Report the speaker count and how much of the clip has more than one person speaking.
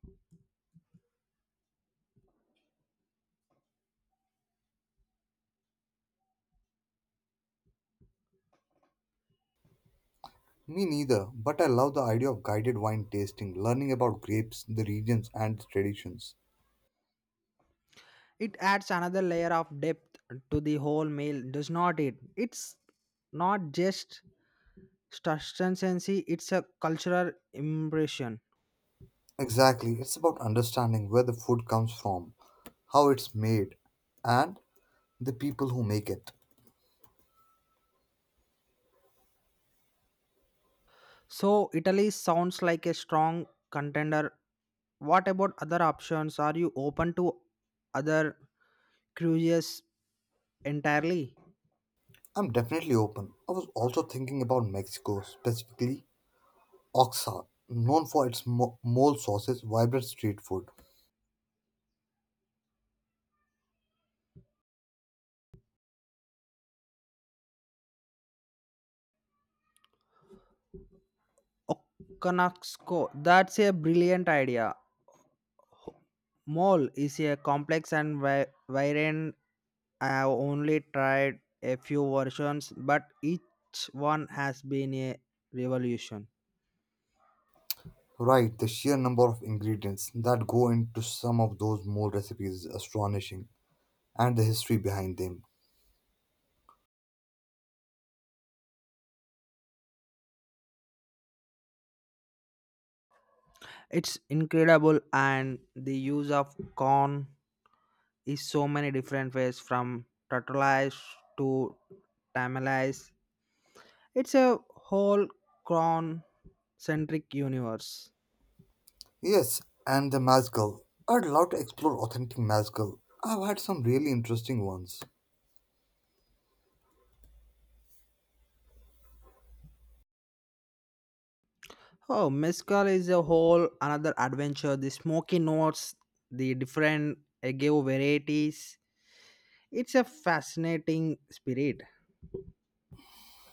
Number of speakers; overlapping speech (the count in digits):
2, no overlap